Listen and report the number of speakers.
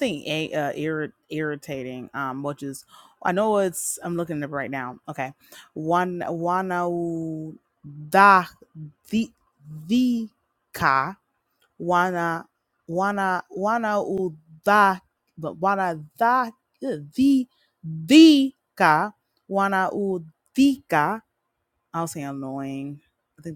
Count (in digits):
1